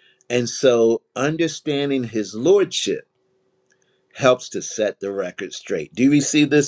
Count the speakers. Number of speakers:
1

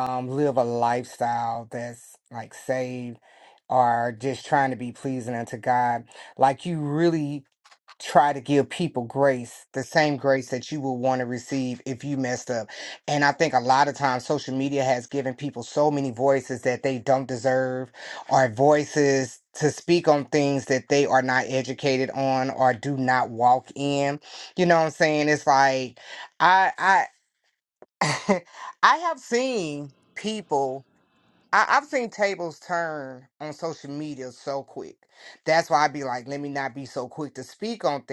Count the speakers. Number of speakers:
1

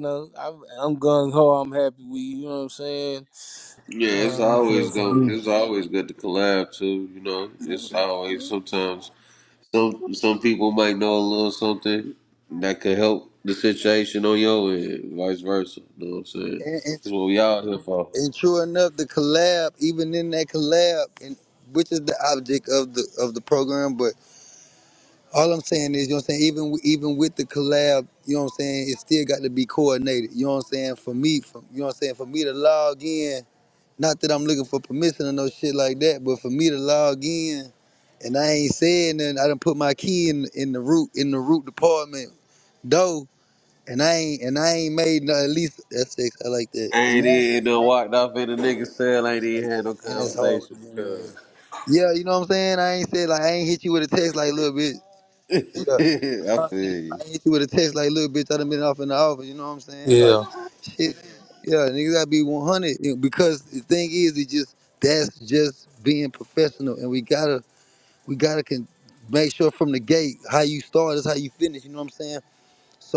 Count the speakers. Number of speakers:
3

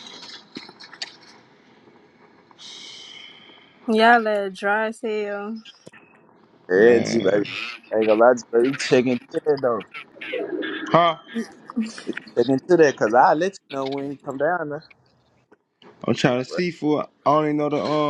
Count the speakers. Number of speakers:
3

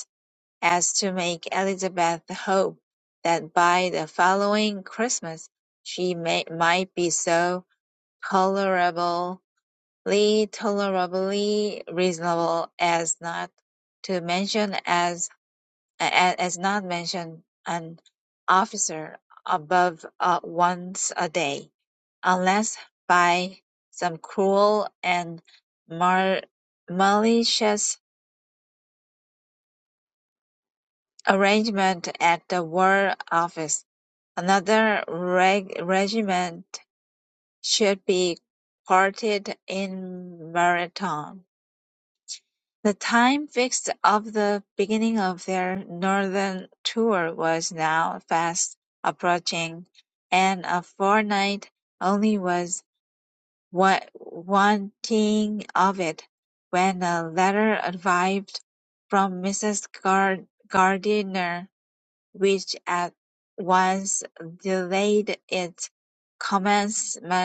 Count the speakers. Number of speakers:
1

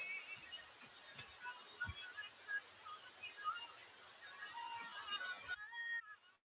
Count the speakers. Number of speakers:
0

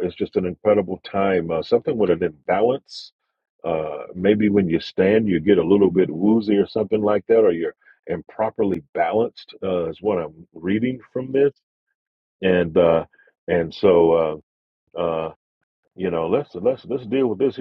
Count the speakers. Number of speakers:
1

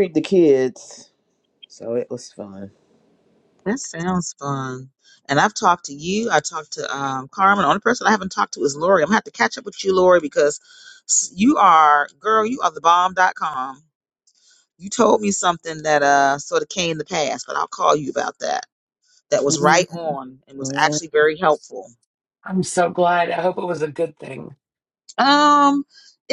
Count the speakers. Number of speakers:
3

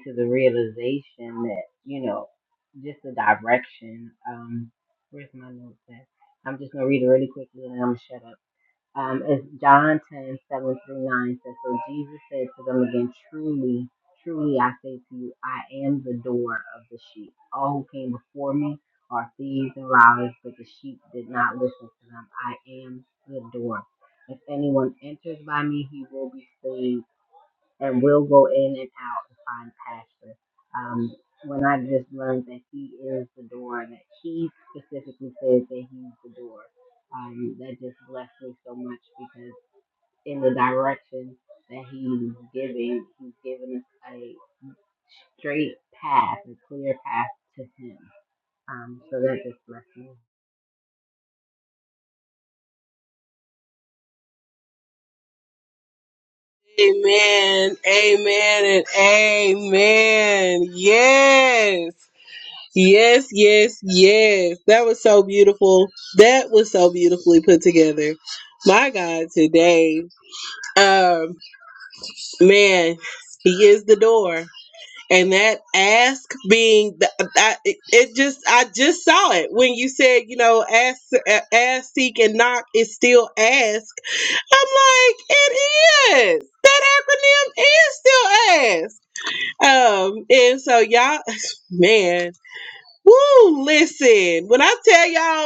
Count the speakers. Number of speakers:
2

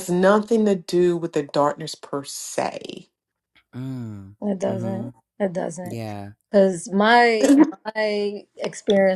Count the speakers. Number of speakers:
3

